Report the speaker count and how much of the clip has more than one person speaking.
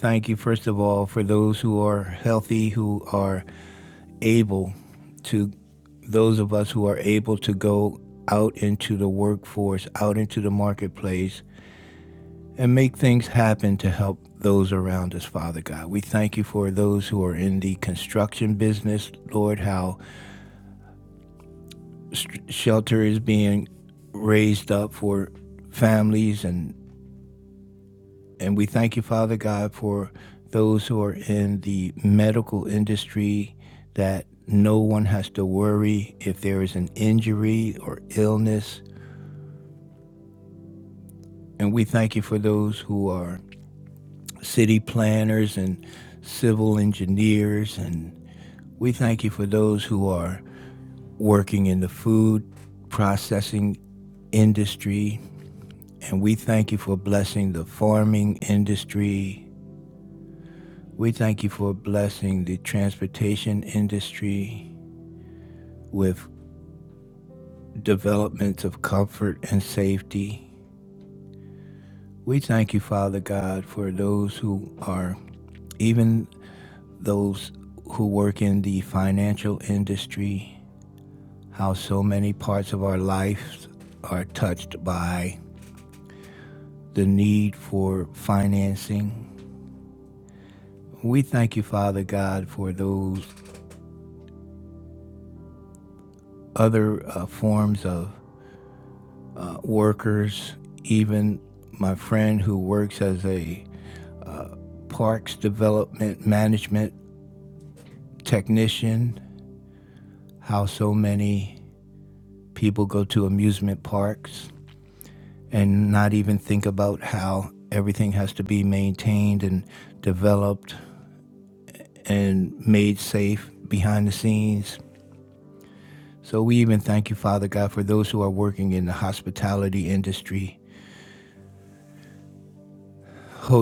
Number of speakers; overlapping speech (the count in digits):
1, no overlap